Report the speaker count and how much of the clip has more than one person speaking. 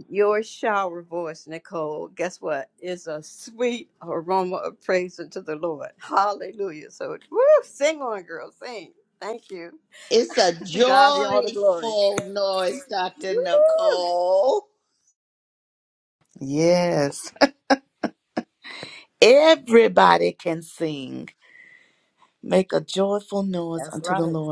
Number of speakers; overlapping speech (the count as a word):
three, about 10%